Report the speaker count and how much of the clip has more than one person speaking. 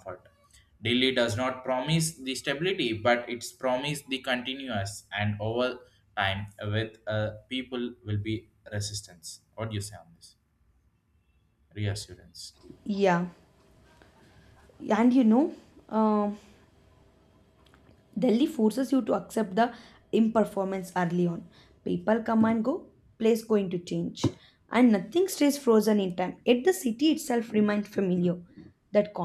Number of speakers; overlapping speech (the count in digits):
2, no overlap